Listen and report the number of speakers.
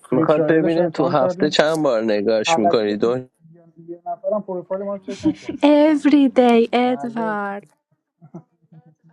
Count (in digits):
3